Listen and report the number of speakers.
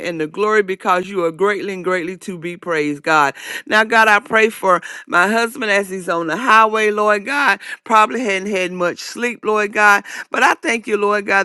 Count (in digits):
1